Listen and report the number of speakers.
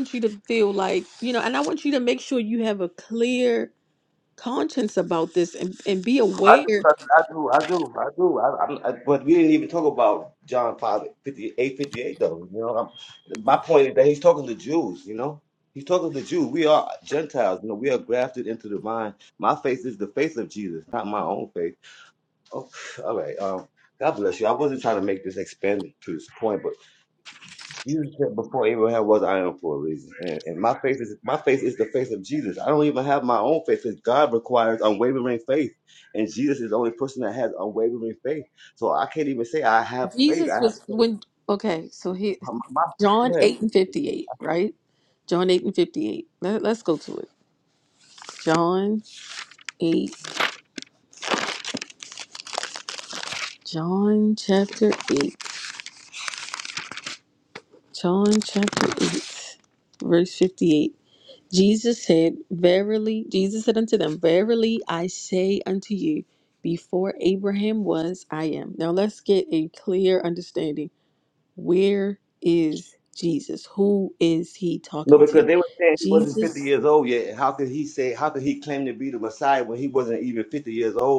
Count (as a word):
two